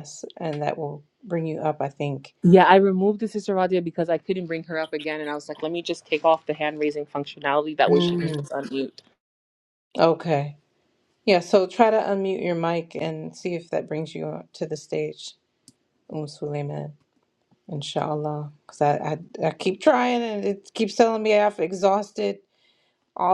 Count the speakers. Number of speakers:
2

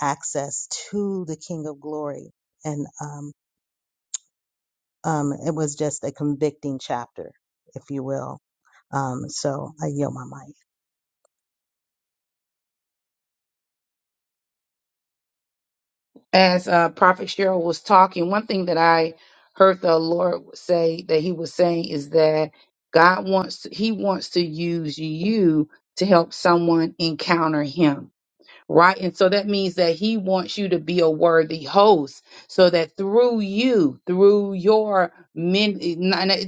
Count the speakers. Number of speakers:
2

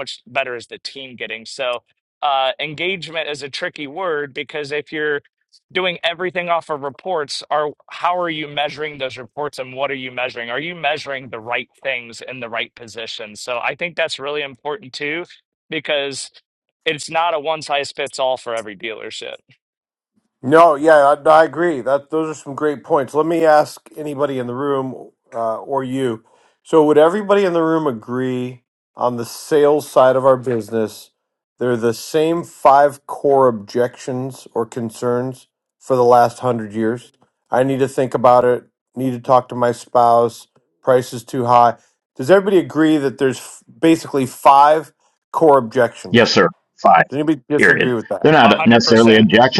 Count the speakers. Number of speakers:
3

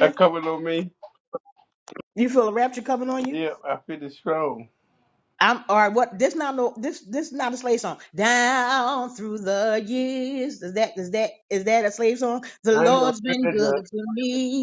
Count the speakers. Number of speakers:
2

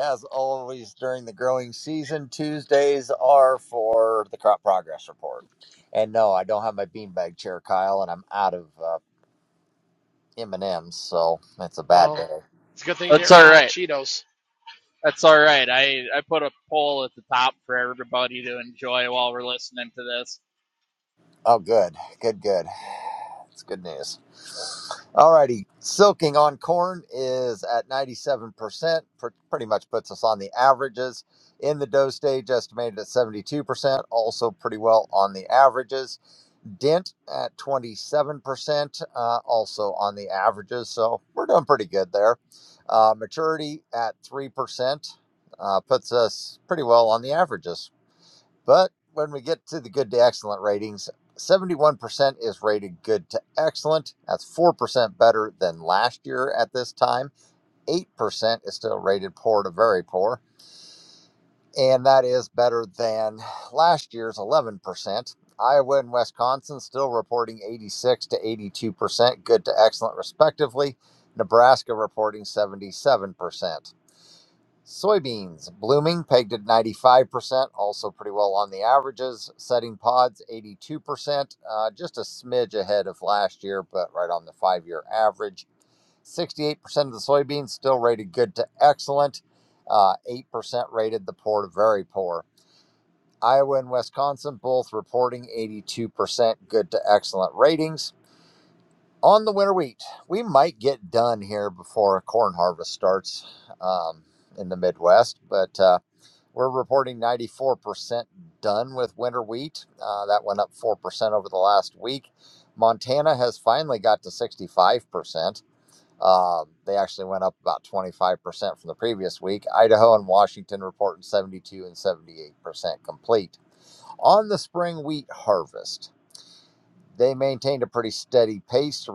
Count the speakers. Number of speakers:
3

